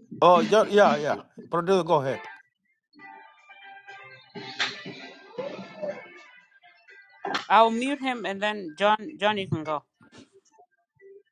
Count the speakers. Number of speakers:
2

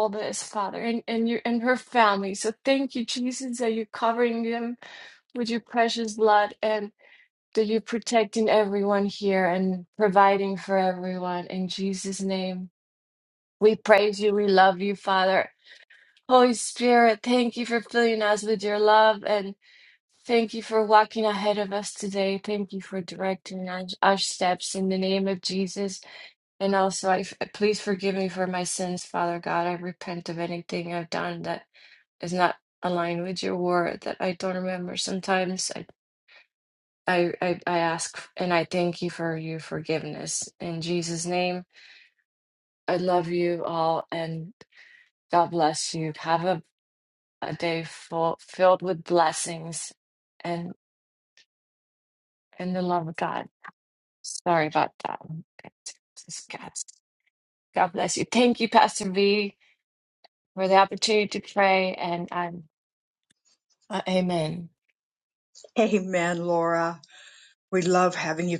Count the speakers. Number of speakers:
2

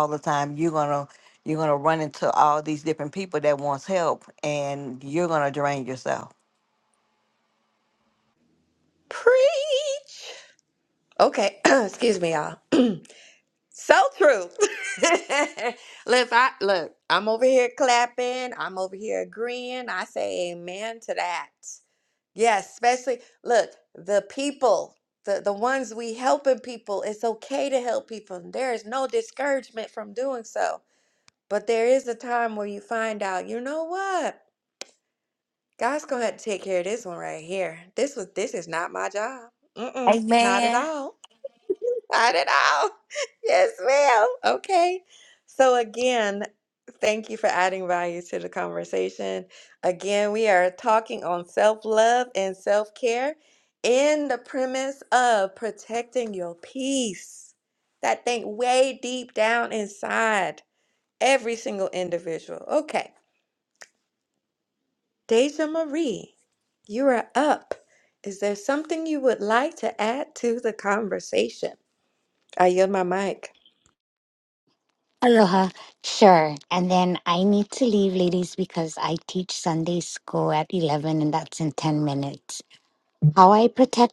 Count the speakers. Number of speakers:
3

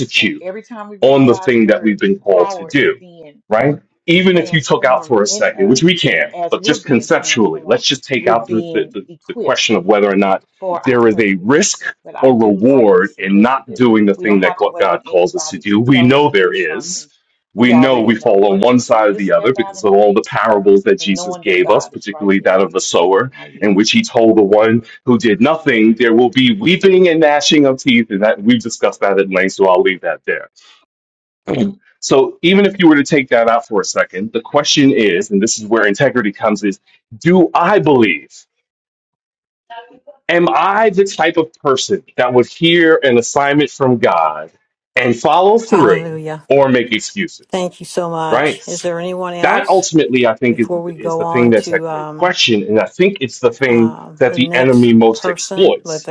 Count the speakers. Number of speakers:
3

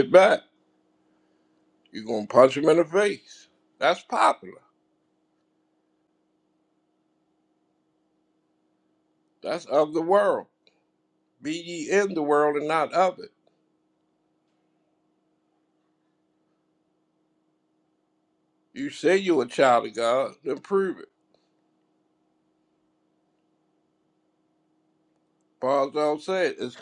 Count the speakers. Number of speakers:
1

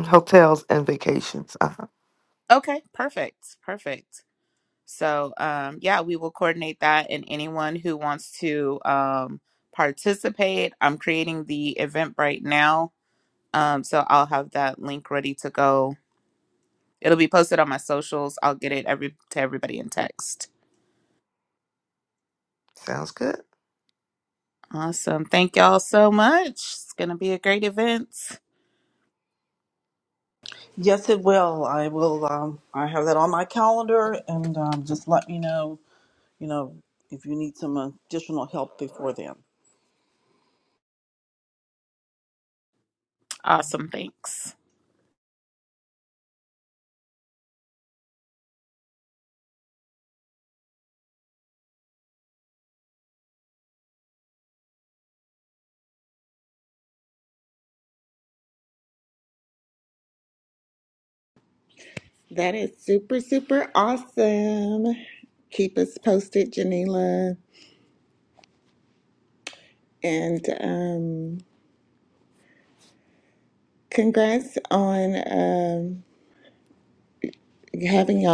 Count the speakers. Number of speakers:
4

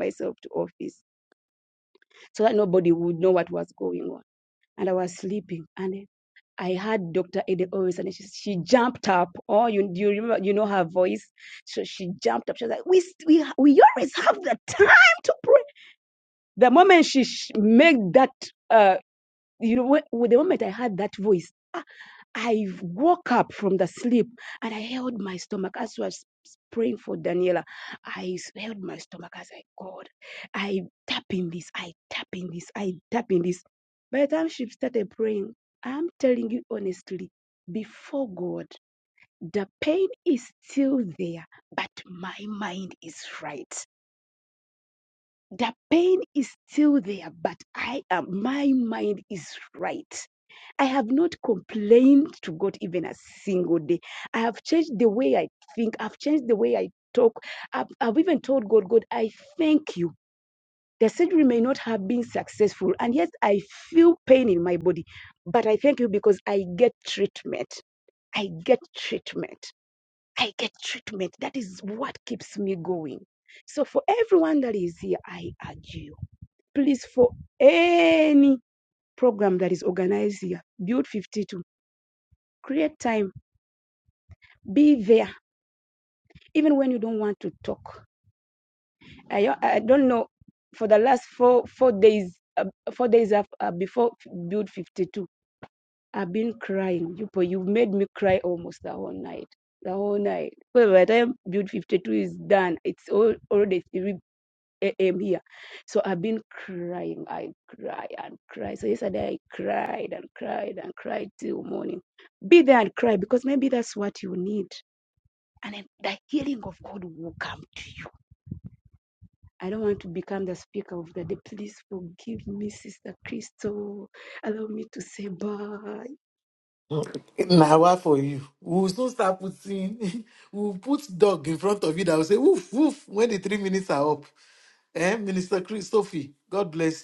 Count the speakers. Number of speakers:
2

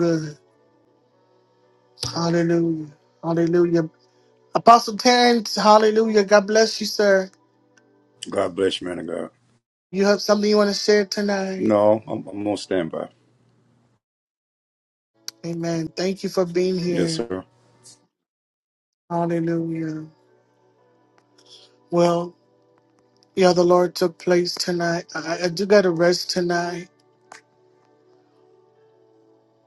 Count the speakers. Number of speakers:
2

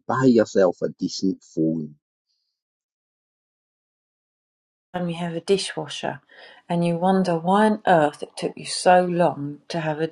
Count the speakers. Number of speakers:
2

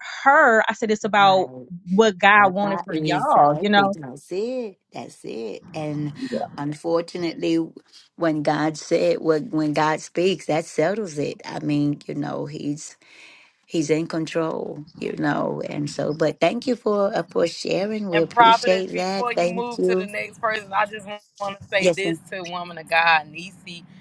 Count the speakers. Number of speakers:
3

